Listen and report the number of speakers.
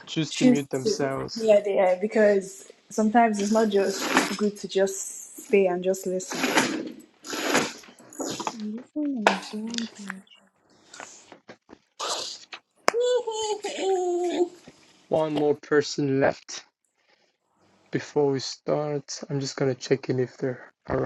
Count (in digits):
3